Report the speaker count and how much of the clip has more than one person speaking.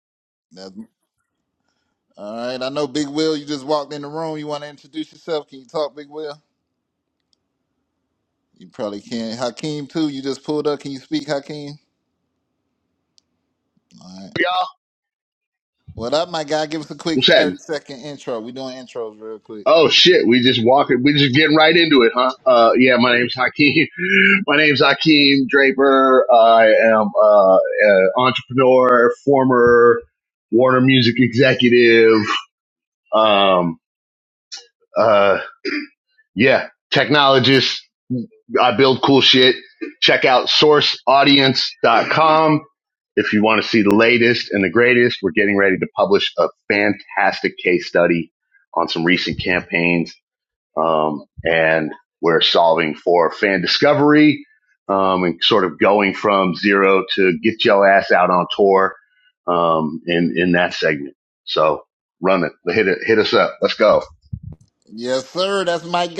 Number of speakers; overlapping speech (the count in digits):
2, about 1%